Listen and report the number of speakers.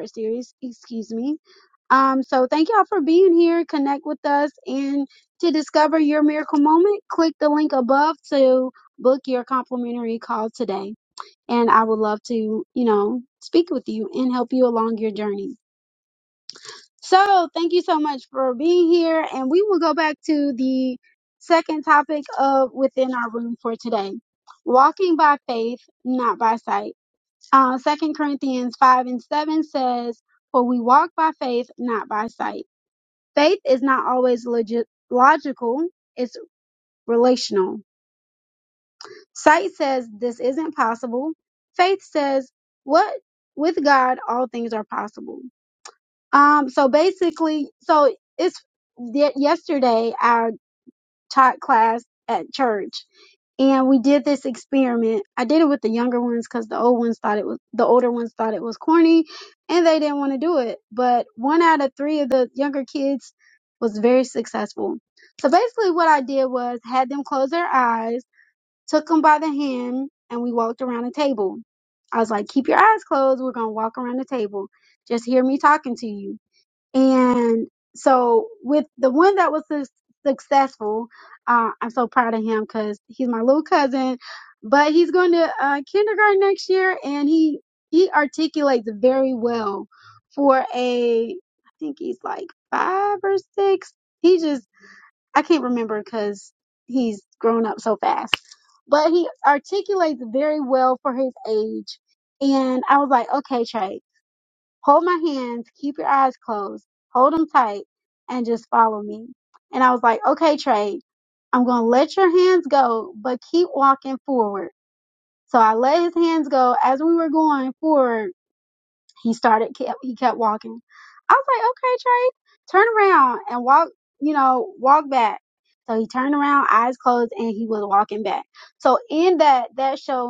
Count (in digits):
1